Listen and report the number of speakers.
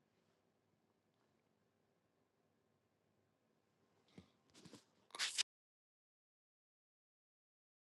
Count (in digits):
0